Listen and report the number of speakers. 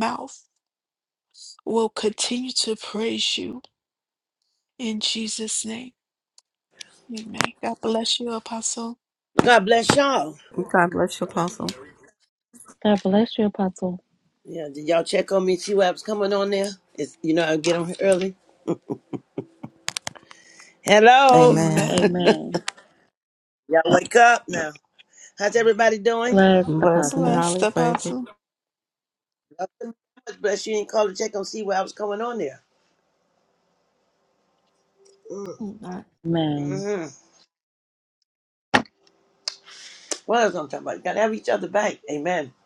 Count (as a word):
four